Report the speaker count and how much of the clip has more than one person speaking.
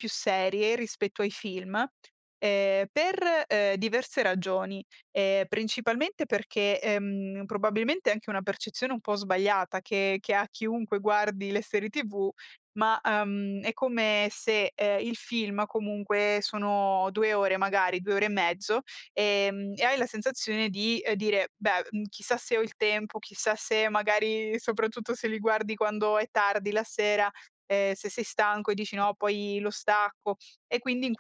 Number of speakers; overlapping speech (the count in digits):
1, no overlap